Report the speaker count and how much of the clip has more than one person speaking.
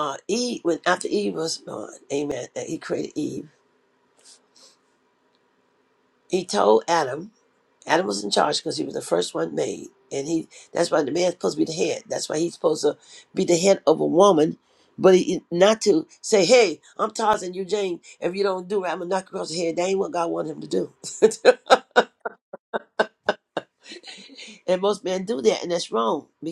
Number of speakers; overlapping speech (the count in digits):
1, no overlap